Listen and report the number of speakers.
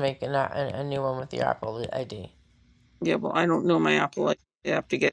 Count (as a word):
two